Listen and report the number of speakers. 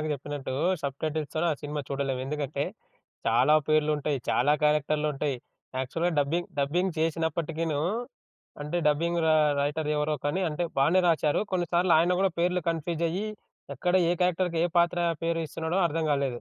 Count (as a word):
one